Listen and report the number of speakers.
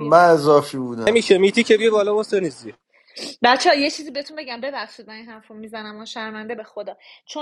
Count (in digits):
3